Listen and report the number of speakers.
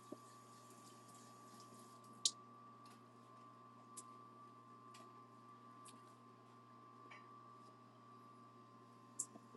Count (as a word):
zero